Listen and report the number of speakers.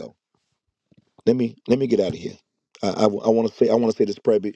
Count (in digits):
1